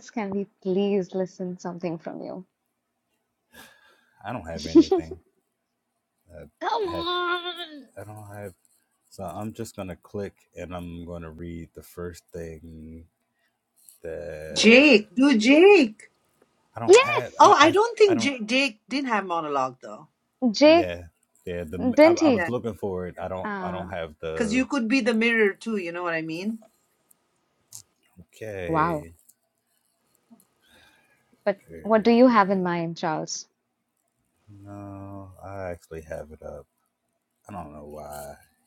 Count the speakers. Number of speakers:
3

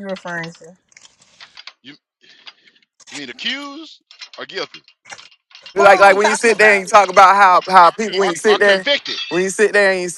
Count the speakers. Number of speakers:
3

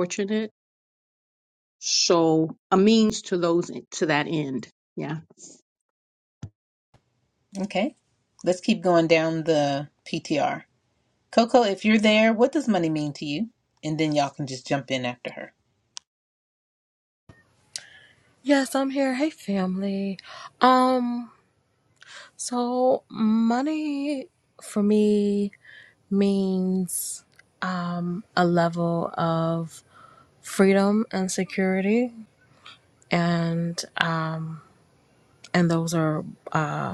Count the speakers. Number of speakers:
3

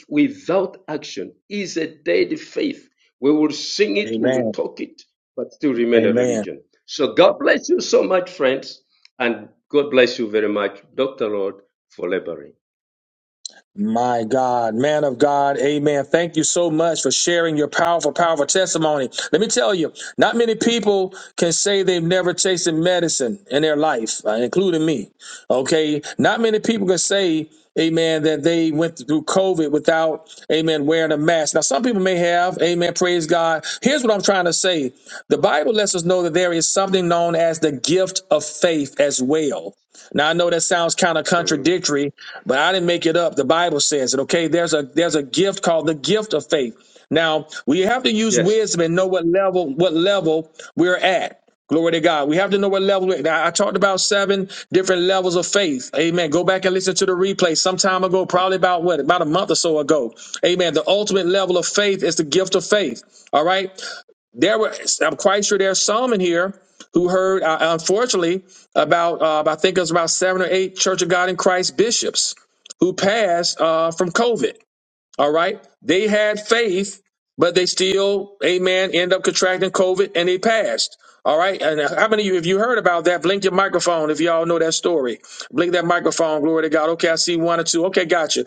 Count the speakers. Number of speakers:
2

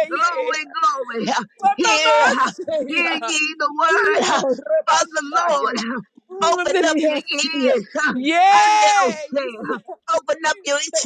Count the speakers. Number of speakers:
2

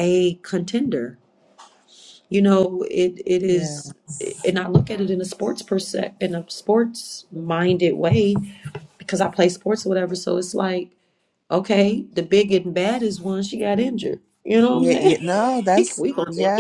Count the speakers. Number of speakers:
2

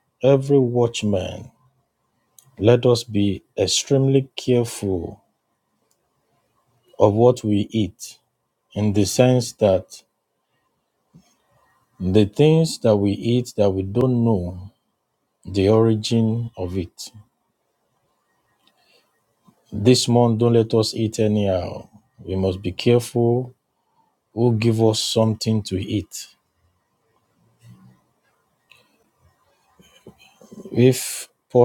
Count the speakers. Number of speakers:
1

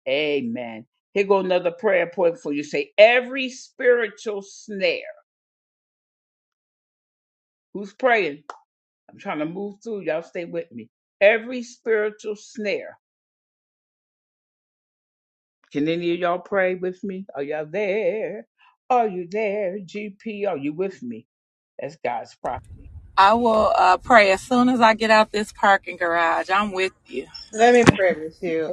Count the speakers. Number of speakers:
3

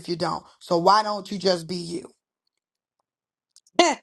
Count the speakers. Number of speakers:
1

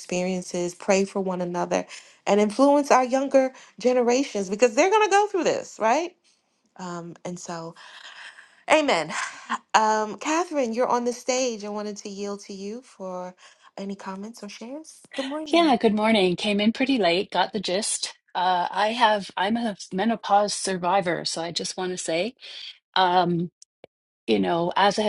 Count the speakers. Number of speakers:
2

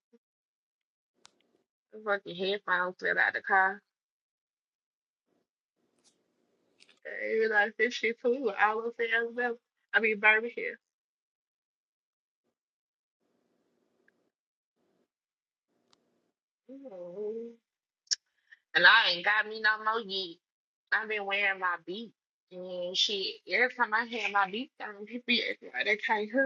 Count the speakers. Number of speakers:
1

